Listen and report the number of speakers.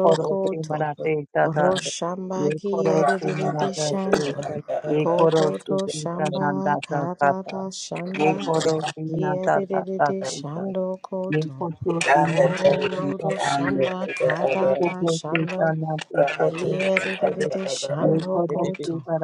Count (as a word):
three